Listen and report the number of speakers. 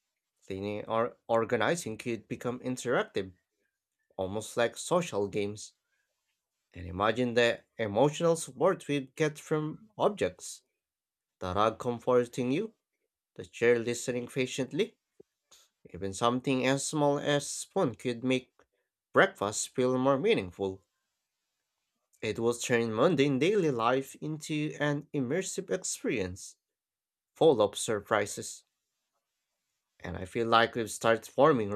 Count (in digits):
1